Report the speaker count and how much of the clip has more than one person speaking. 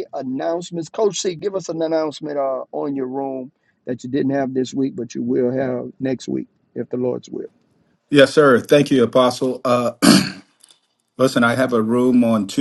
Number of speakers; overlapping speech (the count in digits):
2, no overlap